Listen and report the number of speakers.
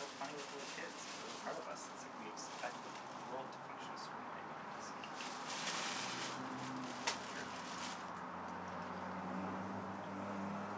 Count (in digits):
1